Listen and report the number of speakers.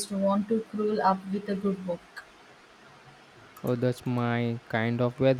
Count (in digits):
2